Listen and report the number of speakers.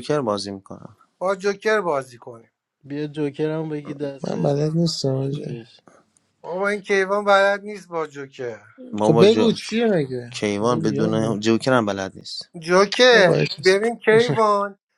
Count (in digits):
4